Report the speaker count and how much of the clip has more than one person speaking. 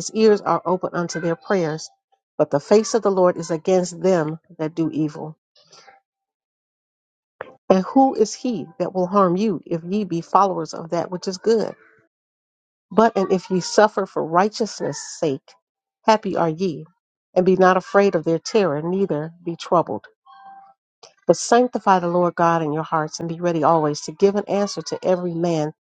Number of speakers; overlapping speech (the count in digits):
1, no overlap